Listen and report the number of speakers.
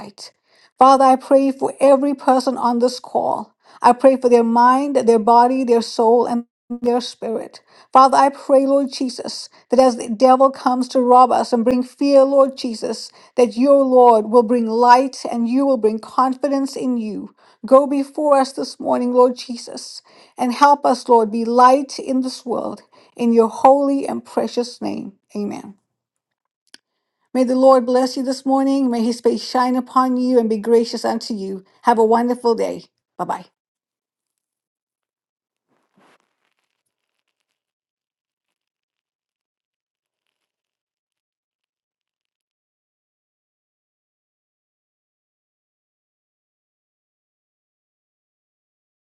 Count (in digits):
1